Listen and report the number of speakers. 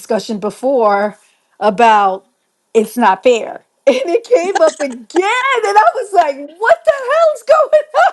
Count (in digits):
1